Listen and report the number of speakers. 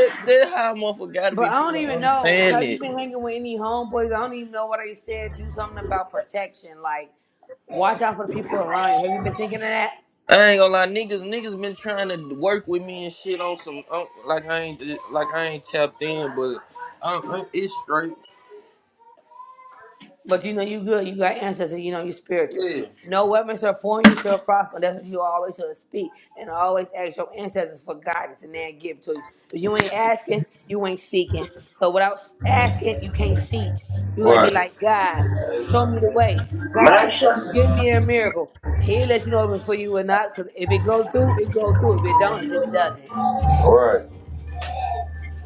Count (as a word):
two